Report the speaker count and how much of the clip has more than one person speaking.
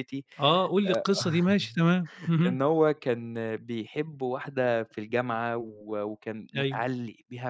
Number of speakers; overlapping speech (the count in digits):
2, about 7%